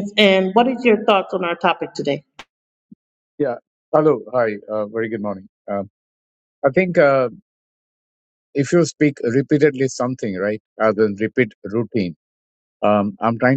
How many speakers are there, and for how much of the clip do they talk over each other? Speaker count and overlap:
two, no overlap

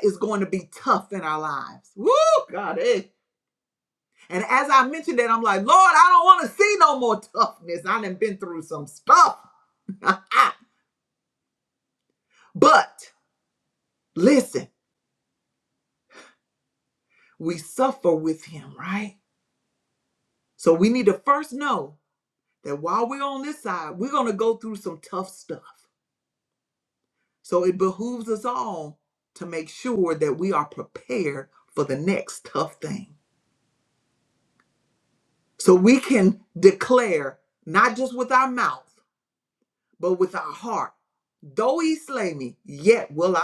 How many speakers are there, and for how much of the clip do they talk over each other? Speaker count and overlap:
one, no overlap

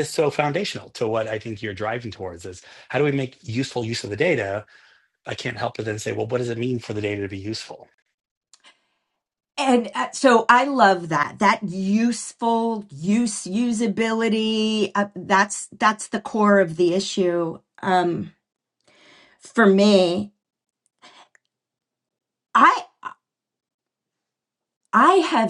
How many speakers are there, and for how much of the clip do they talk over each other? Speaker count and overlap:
two, no overlap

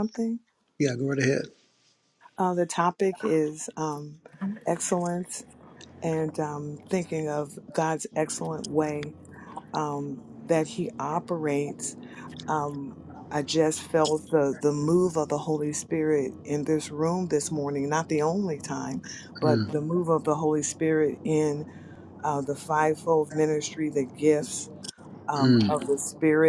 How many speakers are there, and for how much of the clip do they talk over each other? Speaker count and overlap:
two, about 3%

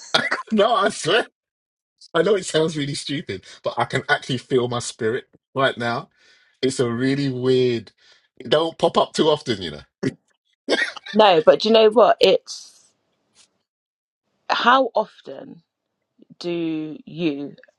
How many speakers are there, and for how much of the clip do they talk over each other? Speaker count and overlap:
two, no overlap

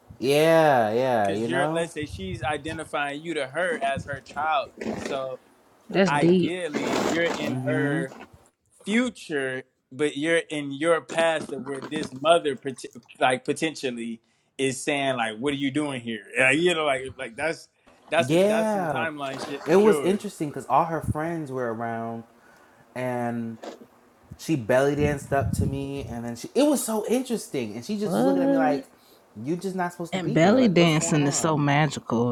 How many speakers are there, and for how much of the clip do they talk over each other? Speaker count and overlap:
three, about 16%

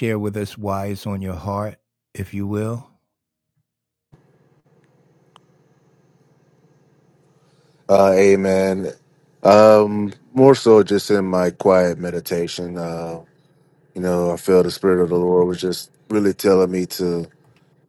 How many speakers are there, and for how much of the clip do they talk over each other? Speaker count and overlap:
two, no overlap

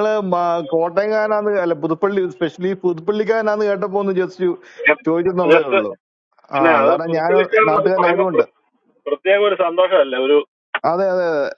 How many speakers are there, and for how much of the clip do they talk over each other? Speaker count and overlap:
two, about 19%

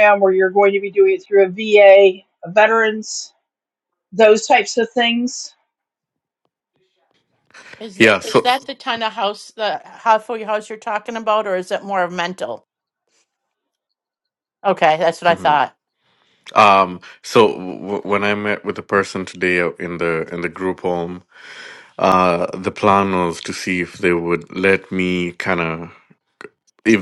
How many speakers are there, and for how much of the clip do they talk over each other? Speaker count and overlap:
three, about 3%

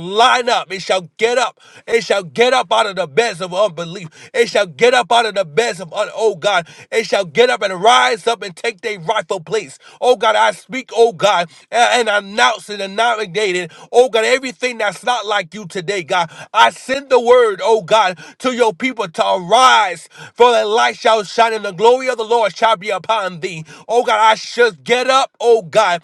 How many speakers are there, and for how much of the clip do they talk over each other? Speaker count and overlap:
one, no overlap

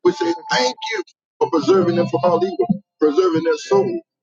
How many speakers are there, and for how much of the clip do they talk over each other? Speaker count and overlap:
one, no overlap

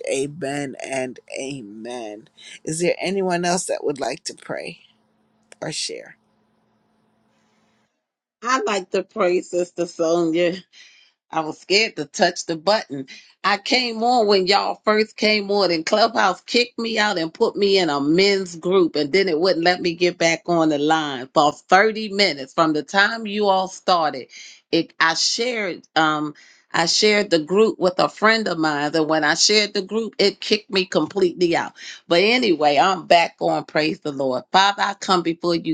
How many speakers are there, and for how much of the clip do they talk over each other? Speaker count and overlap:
two, no overlap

